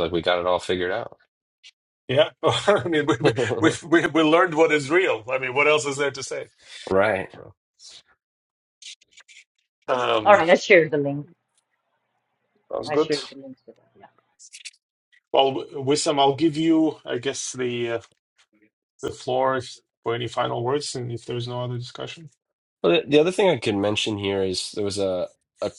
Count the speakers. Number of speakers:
three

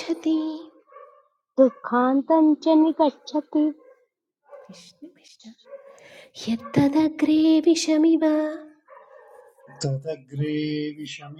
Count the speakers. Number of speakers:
three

